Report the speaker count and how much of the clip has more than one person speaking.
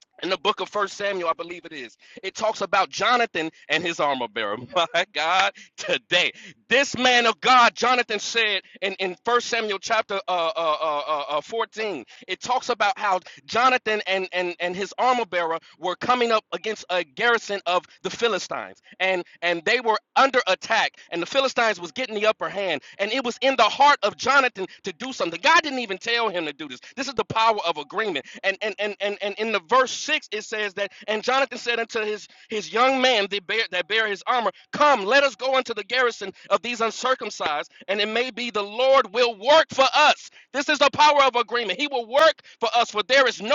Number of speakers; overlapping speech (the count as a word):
one, no overlap